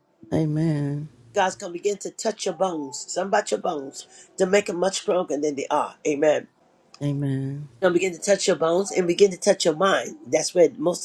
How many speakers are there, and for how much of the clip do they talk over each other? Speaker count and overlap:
2, no overlap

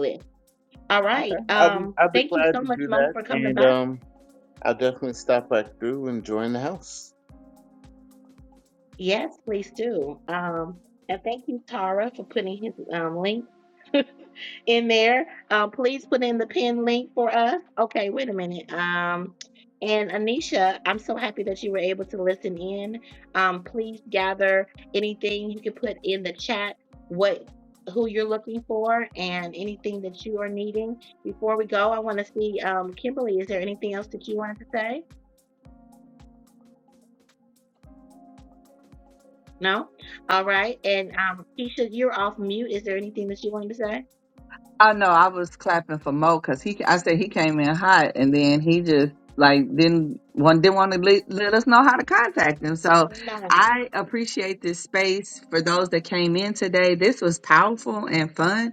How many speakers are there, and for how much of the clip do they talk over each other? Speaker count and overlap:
3, about 5%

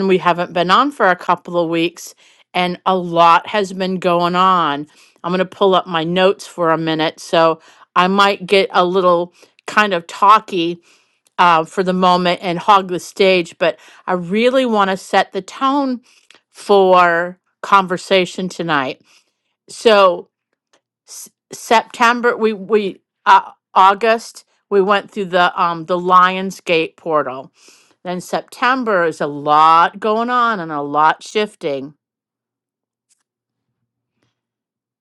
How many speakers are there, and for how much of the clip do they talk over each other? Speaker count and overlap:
1, no overlap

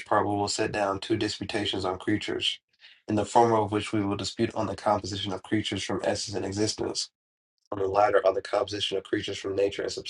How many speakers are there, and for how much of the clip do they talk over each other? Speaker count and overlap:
1, no overlap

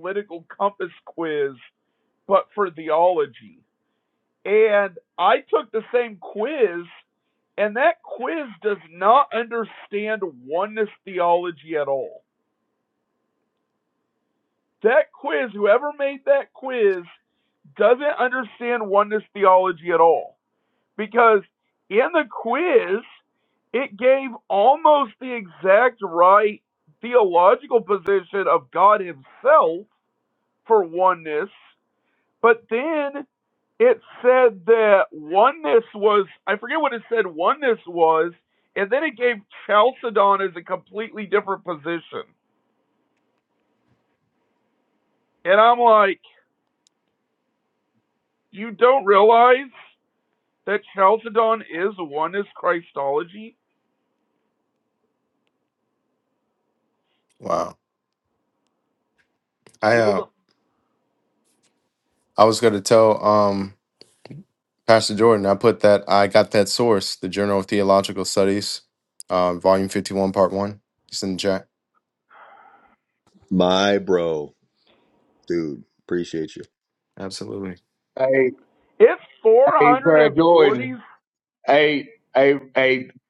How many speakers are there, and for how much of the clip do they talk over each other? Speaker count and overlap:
4, about 2%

